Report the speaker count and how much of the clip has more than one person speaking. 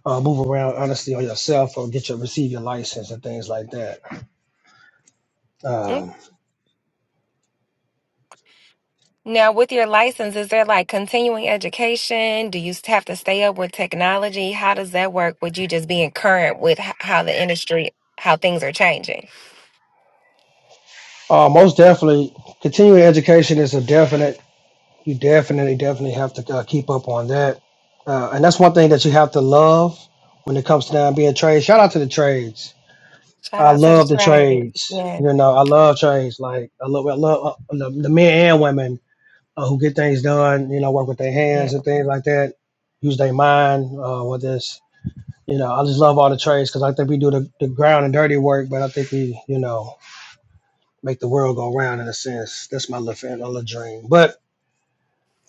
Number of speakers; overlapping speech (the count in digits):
2, about 2%